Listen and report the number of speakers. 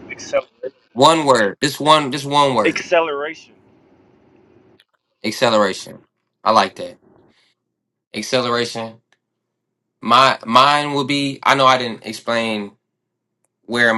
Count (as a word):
two